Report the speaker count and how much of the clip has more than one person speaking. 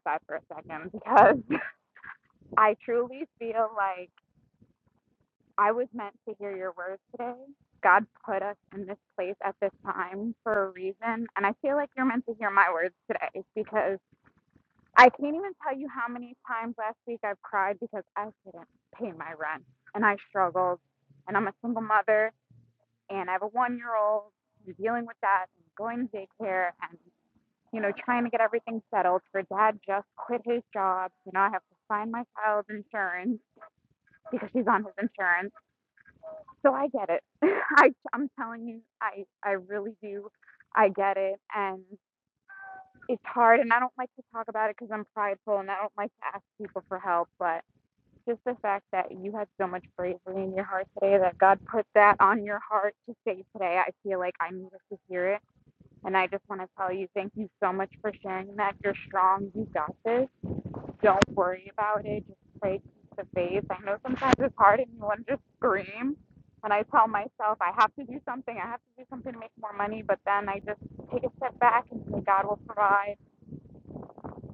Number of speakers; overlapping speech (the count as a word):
one, no overlap